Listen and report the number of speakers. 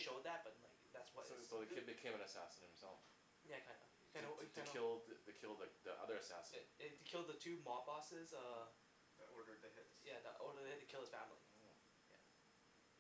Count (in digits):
3